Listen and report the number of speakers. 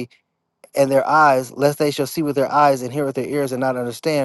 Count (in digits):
1